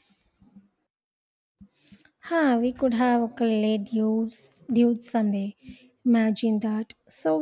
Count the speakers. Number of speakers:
one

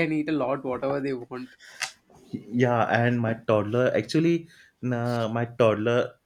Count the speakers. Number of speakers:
two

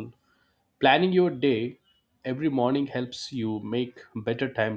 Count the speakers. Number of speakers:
one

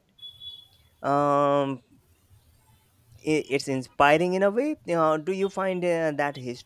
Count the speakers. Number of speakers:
one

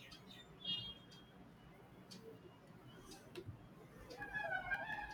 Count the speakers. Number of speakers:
zero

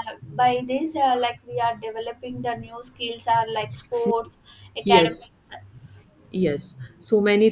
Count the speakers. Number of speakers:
two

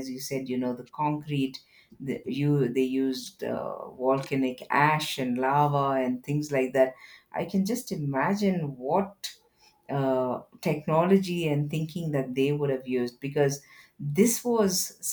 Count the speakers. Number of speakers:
one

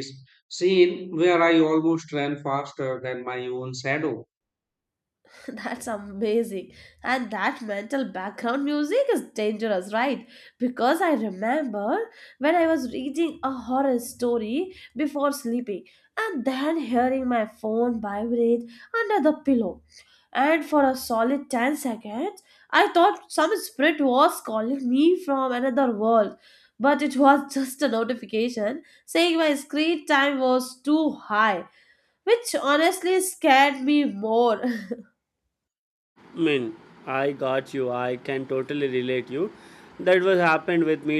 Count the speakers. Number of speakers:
three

